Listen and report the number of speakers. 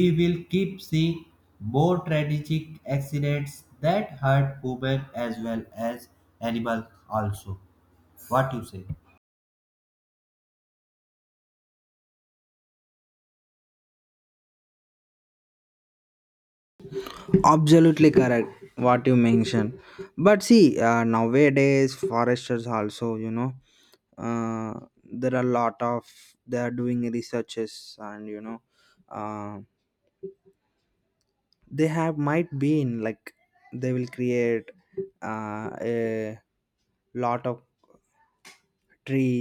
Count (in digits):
2